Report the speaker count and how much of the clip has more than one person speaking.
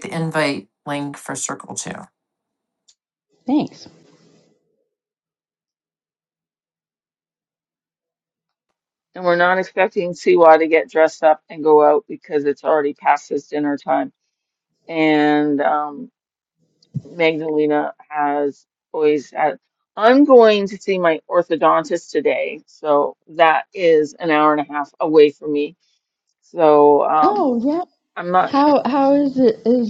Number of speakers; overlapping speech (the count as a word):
three, about 1%